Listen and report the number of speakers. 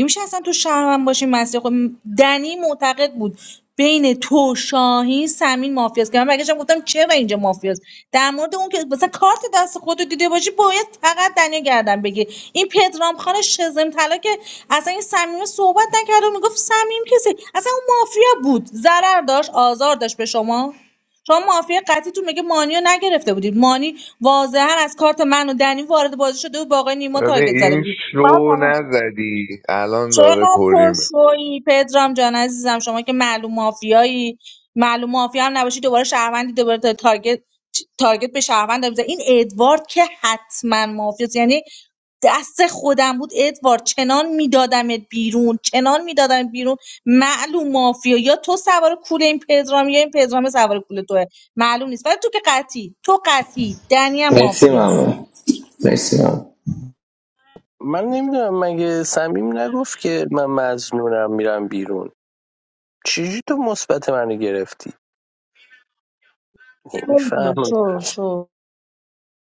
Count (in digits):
4